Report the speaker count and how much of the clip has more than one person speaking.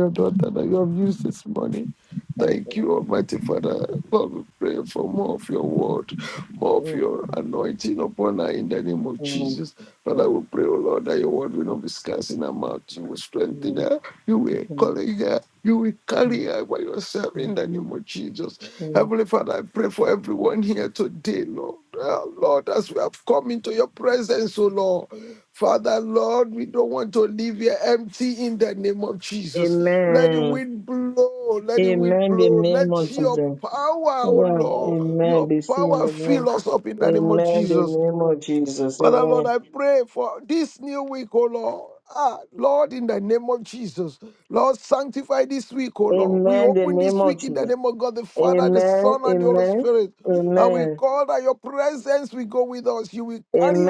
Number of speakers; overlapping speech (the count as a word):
two, about 23%